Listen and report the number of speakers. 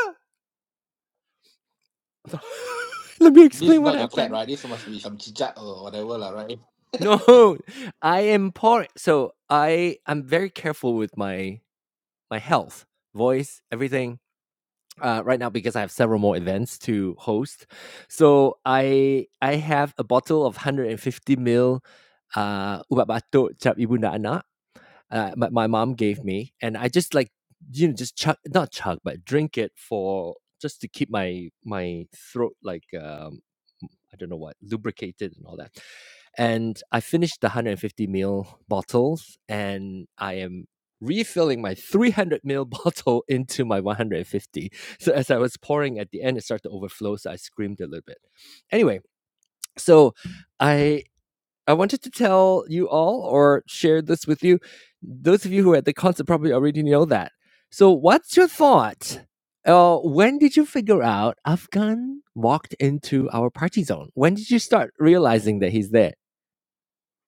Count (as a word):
two